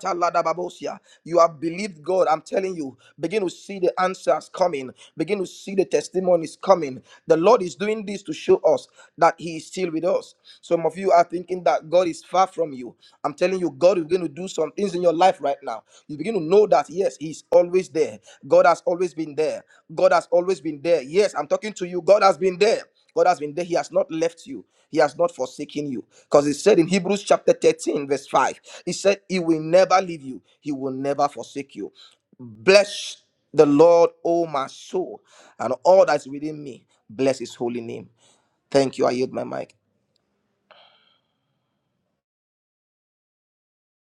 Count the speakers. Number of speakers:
1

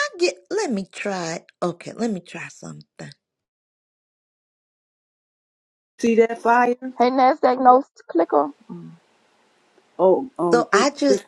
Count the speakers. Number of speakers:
3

